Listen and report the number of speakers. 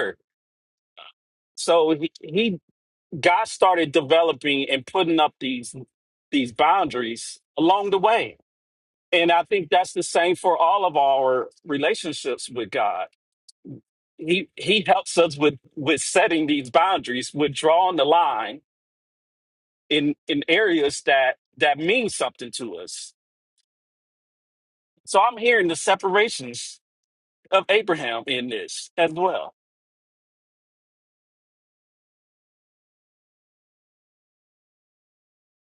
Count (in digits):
1